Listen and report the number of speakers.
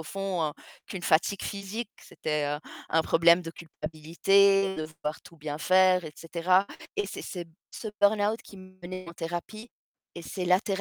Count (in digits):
1